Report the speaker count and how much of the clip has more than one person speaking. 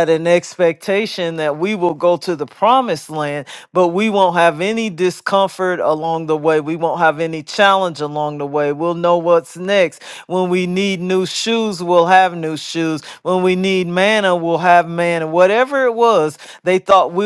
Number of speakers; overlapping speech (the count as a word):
one, no overlap